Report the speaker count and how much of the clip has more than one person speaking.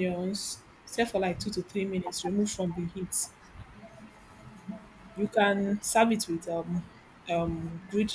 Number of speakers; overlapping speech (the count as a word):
one, no overlap